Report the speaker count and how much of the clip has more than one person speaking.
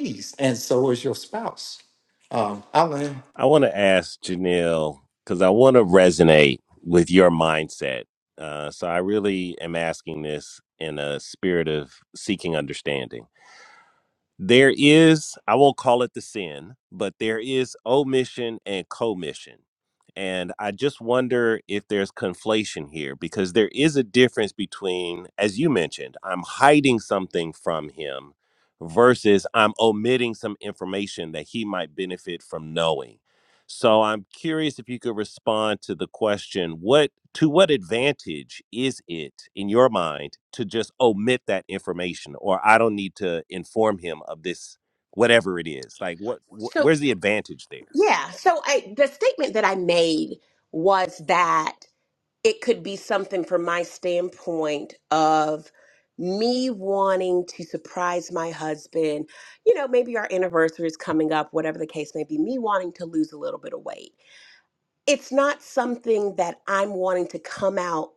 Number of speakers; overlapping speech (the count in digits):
3, under 1%